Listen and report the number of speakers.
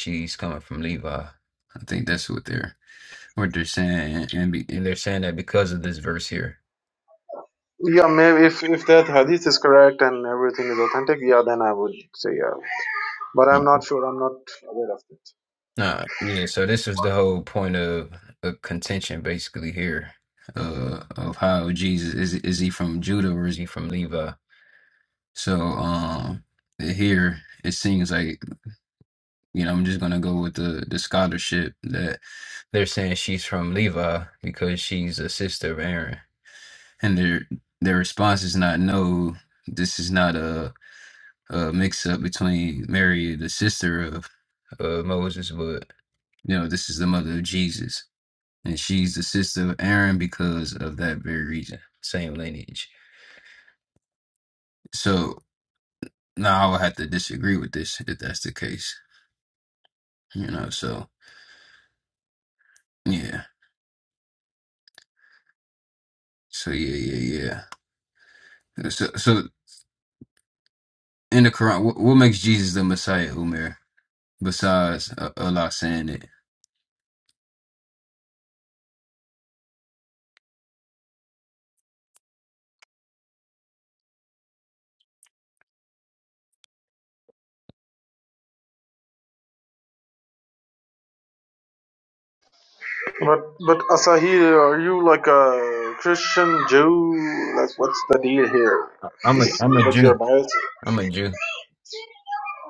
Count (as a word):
two